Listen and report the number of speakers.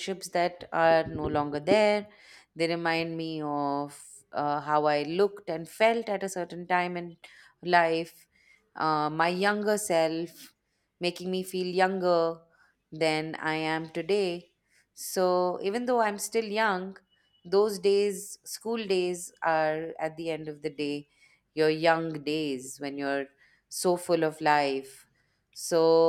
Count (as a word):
one